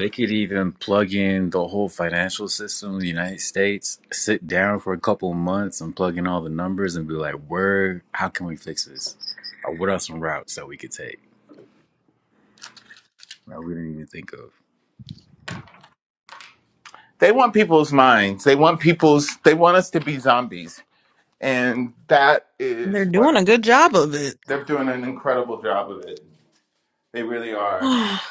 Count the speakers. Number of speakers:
3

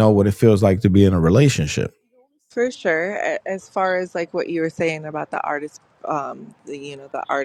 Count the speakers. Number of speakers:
2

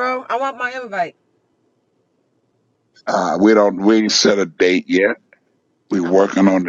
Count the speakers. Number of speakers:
2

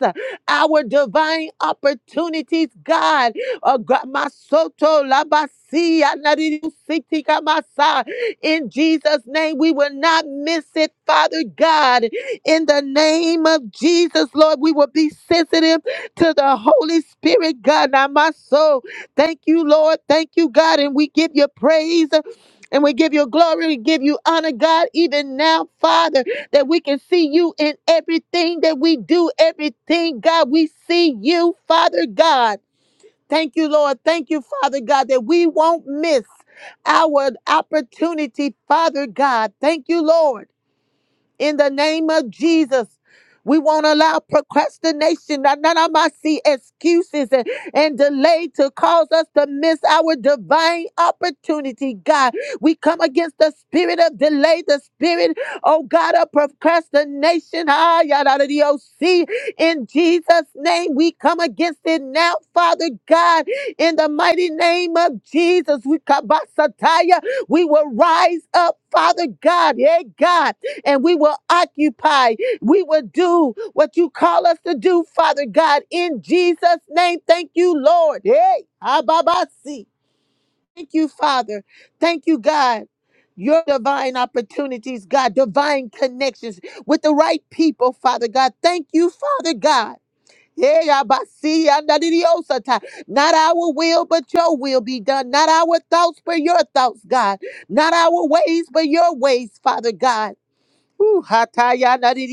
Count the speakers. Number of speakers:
1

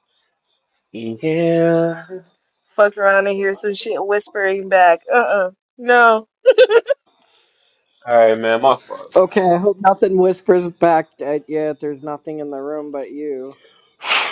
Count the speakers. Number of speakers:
3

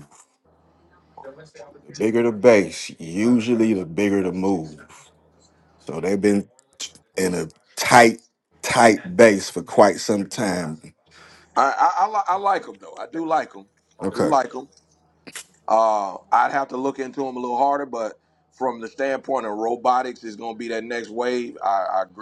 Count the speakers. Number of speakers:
2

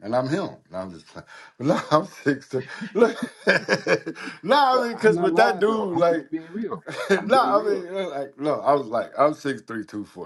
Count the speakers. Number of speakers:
2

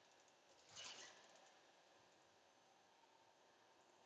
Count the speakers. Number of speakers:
0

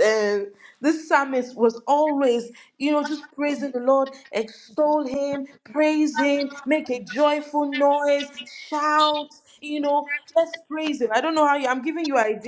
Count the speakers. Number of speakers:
1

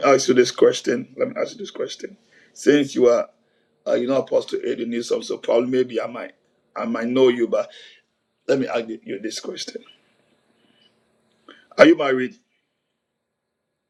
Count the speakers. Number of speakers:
1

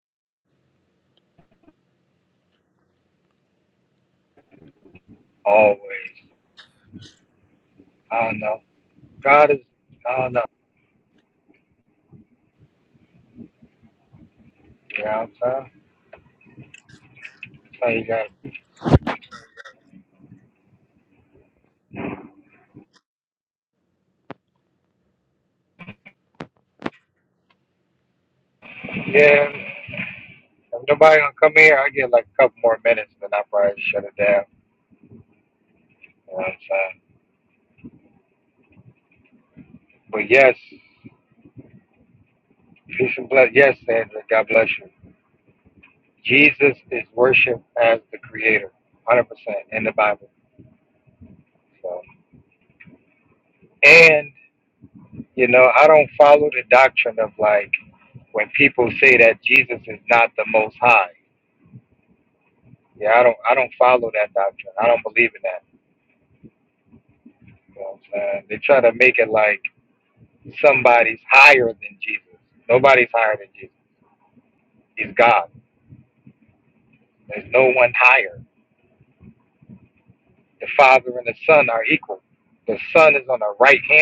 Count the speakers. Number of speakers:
1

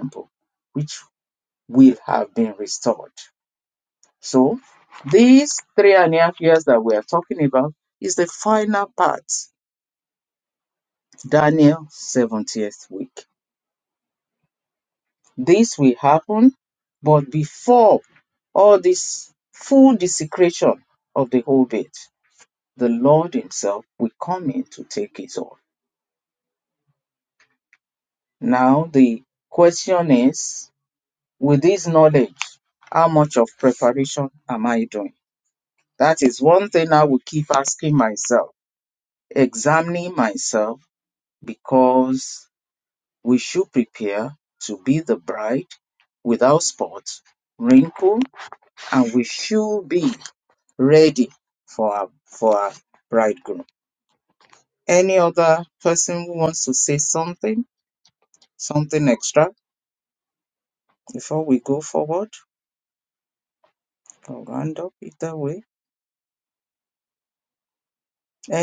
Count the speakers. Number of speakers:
1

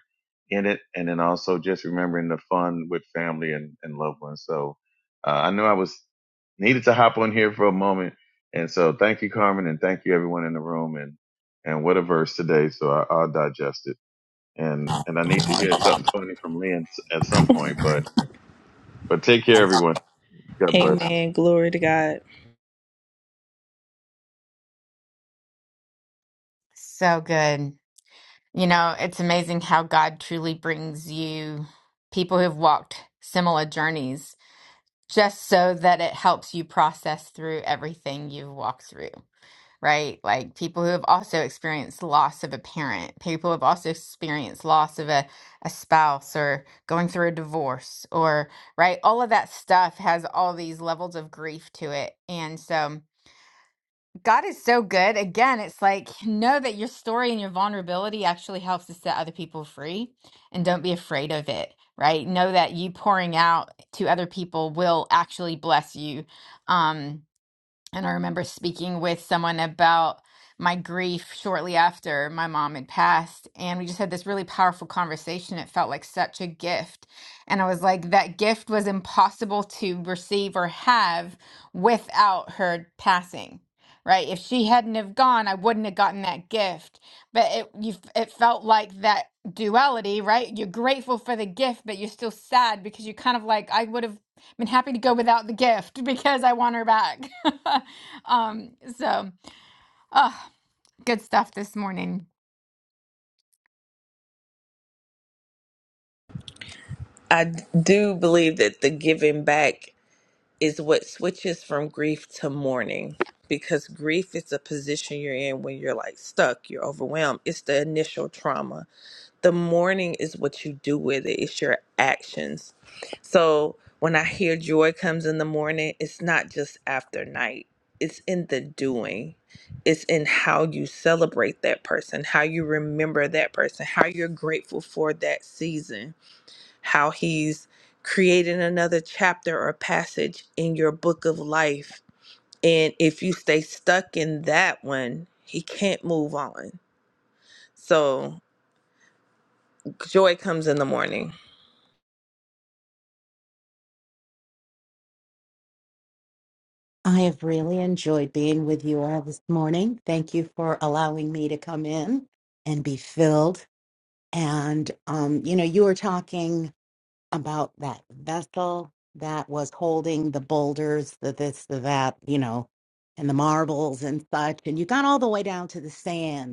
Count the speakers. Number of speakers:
4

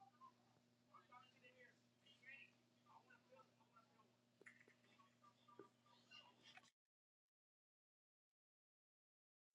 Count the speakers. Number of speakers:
0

